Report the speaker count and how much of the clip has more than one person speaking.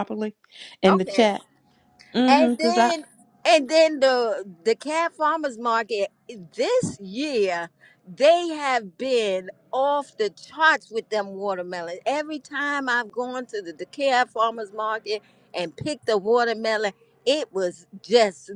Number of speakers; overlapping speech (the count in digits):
2, about 6%